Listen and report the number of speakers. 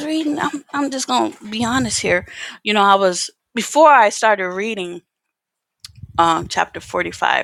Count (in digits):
1